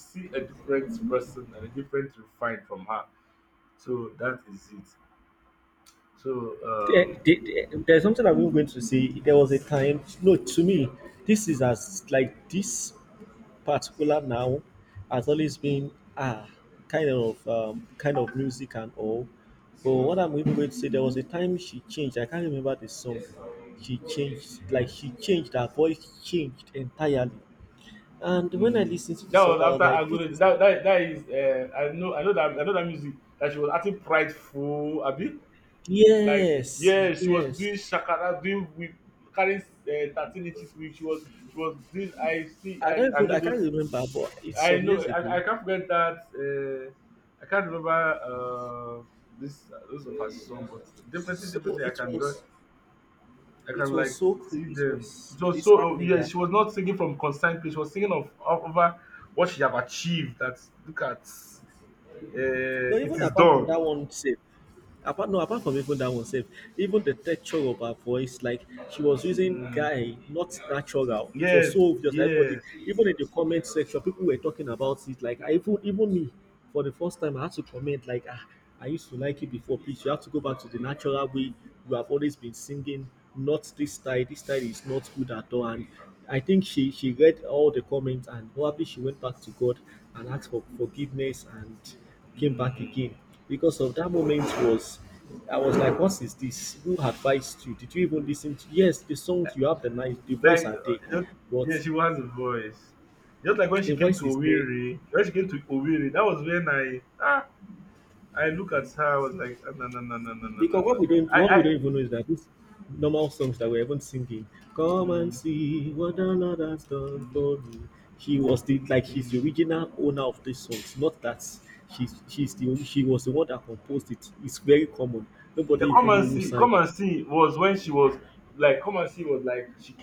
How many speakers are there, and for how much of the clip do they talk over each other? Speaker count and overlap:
2, about 11%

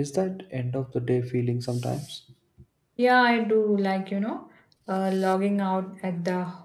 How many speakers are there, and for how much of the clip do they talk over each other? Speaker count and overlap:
2, no overlap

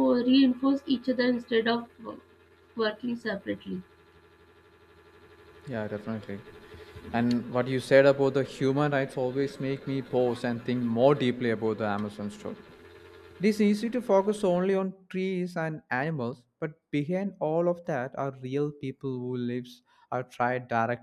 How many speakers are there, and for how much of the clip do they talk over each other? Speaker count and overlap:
2, no overlap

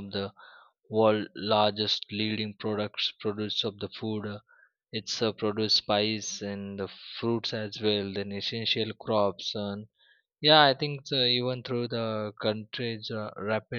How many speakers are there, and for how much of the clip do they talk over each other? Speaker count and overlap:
1, no overlap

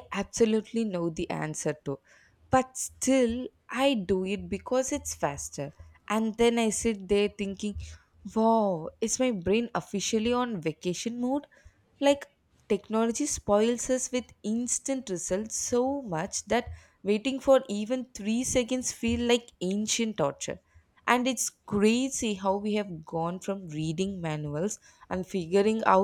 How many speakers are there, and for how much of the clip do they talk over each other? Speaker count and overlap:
1, no overlap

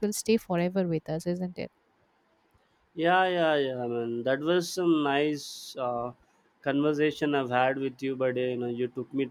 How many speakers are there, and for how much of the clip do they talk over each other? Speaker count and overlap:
2, no overlap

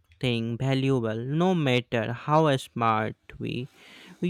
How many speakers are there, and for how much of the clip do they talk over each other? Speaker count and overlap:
1, no overlap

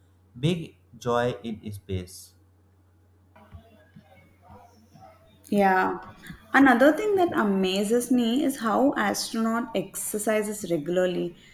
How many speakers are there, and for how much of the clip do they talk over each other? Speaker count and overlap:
2, no overlap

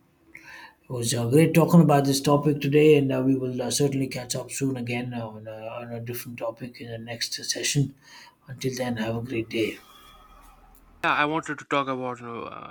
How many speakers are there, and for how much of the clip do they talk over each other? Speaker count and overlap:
2, no overlap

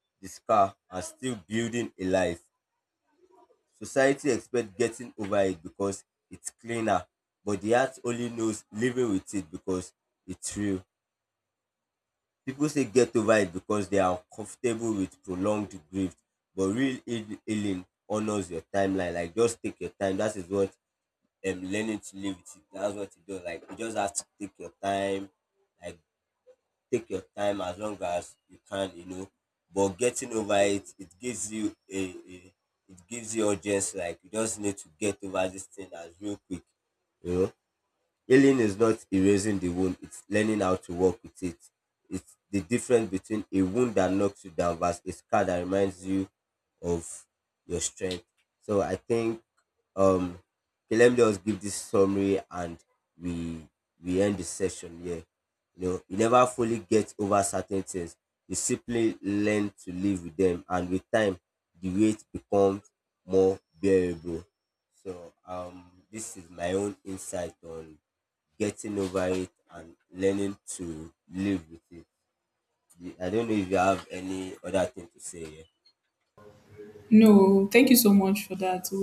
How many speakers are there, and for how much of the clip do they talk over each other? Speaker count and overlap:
2, no overlap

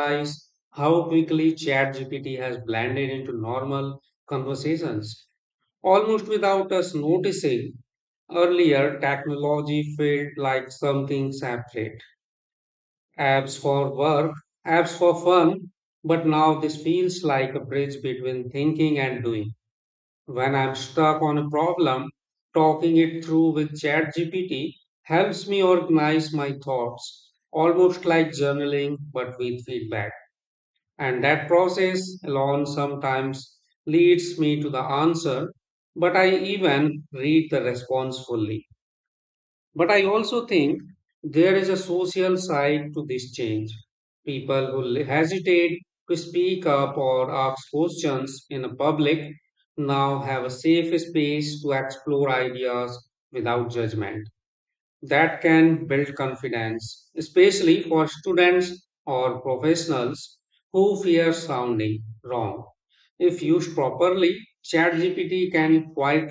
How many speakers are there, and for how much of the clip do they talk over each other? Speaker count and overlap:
1, no overlap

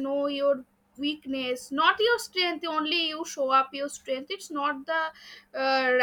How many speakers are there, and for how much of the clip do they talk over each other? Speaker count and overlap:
1, no overlap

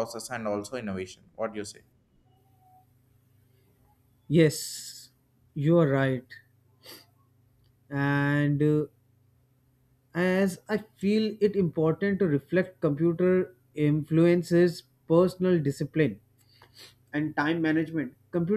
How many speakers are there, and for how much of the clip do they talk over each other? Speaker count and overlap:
2, no overlap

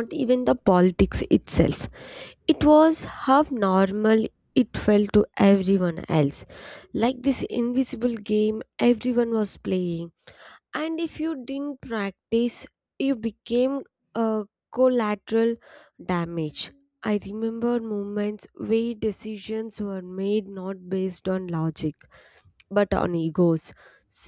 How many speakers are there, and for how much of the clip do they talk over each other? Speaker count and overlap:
1, no overlap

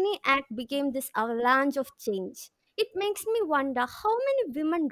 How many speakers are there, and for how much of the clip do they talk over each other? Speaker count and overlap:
1, no overlap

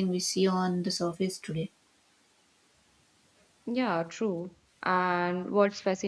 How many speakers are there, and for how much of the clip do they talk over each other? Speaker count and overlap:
2, no overlap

